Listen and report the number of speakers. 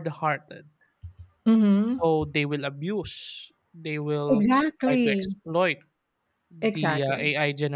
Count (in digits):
2